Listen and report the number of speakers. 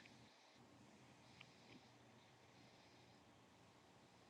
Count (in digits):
0